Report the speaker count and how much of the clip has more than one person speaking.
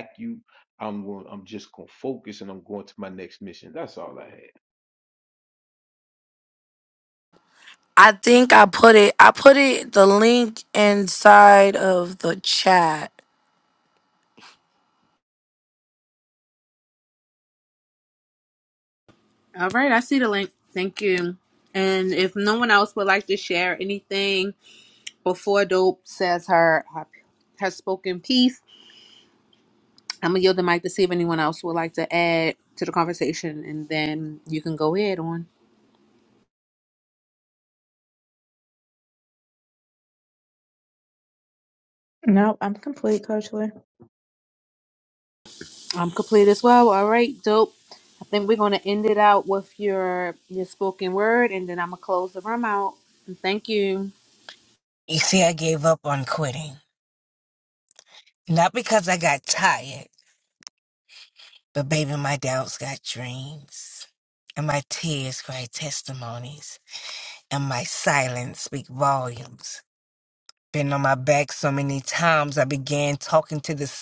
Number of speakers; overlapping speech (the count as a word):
five, no overlap